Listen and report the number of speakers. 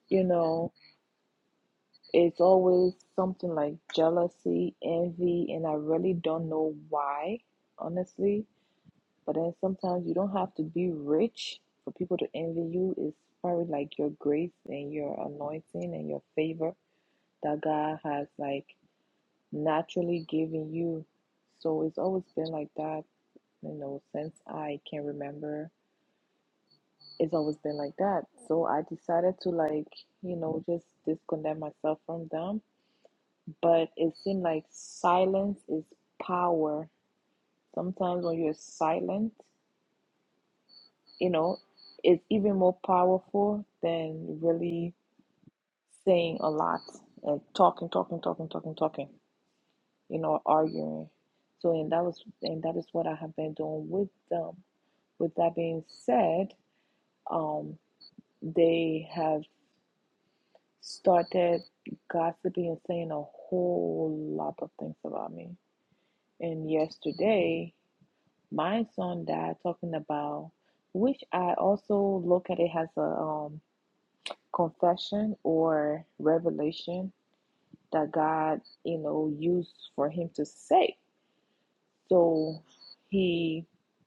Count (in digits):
1